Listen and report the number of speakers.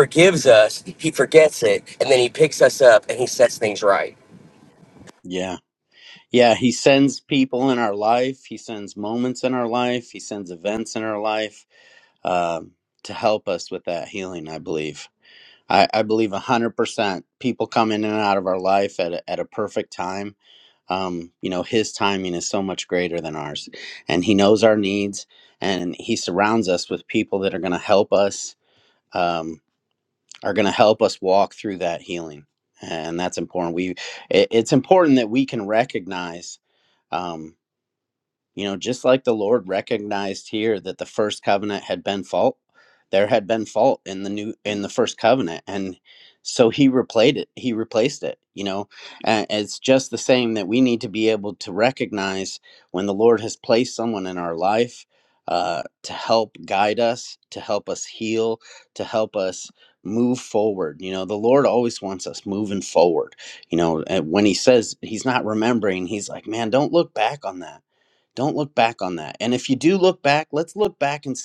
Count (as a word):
two